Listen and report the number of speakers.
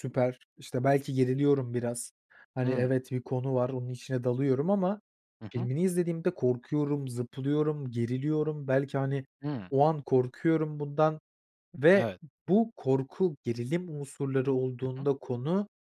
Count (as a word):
two